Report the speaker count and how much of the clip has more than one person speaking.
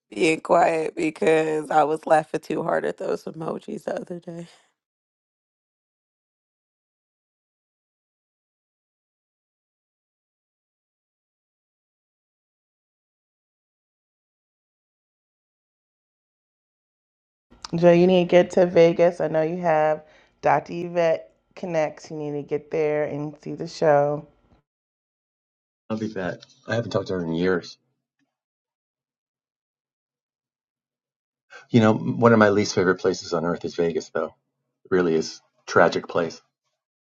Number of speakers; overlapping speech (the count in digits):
3, no overlap